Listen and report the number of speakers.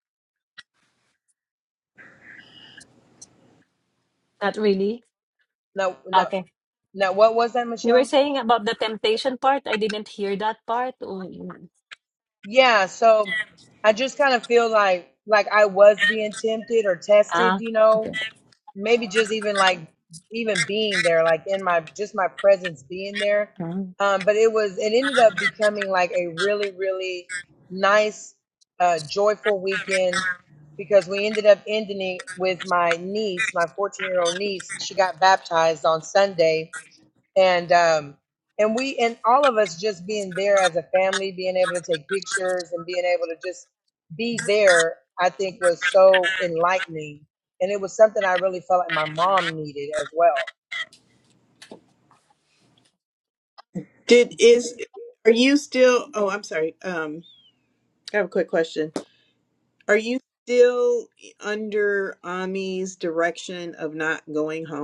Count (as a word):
three